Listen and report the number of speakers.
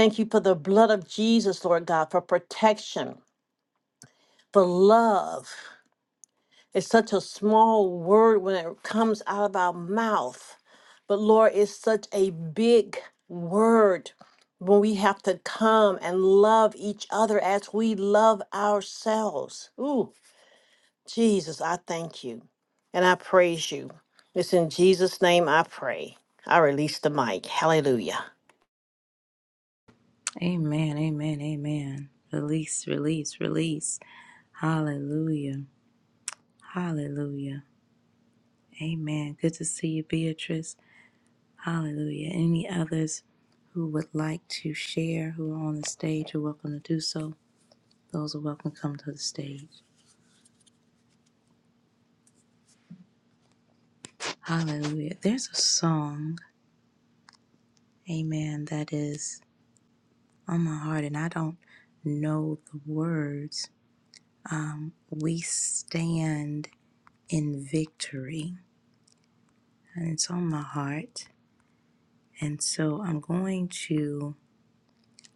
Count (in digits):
2